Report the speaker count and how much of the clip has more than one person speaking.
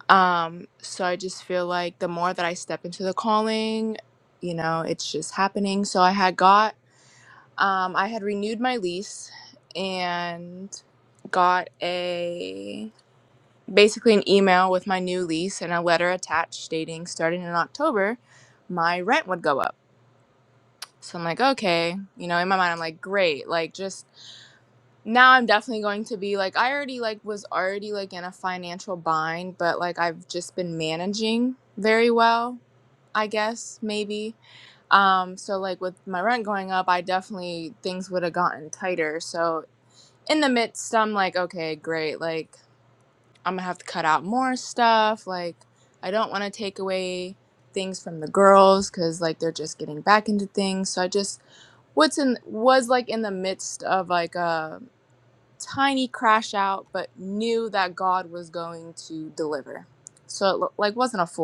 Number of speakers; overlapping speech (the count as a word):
one, no overlap